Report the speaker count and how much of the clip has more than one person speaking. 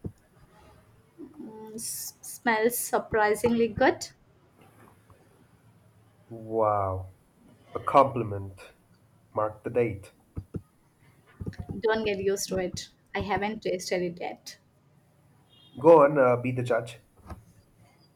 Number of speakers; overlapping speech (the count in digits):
2, no overlap